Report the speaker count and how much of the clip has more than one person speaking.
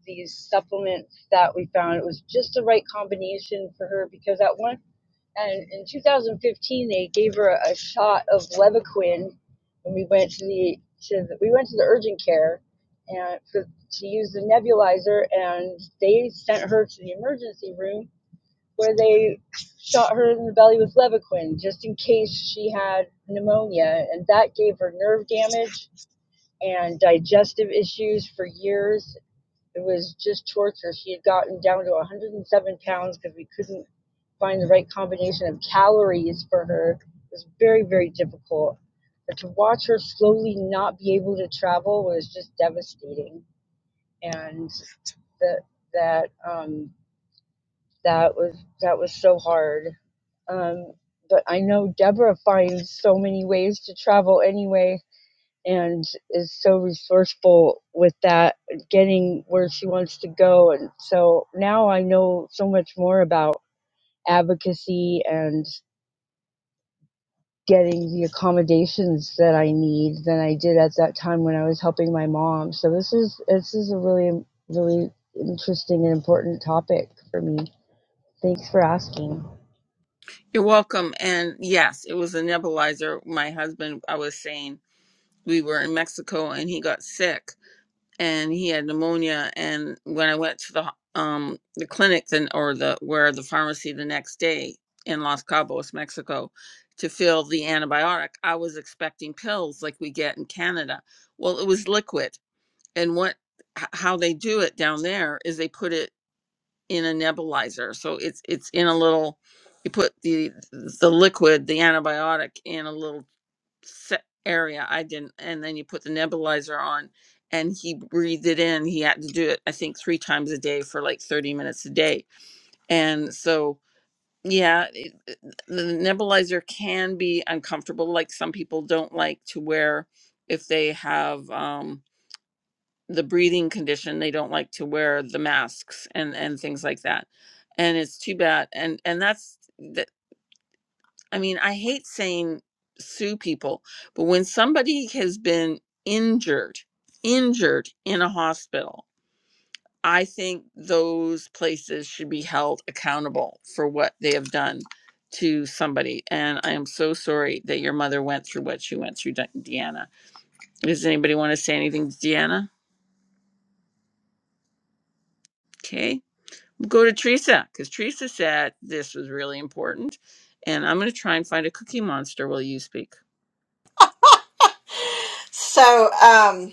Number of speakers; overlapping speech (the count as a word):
three, no overlap